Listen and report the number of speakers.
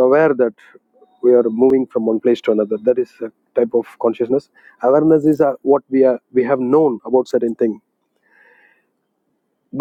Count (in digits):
1